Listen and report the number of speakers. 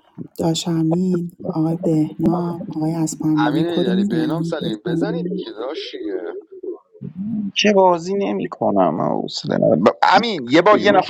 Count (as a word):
three